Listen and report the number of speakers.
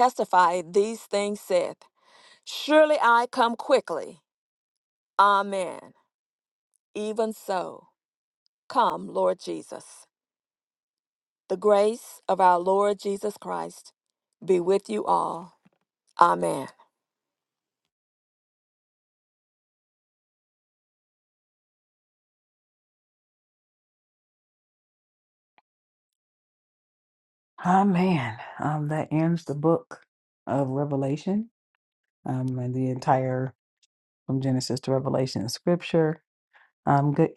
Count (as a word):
two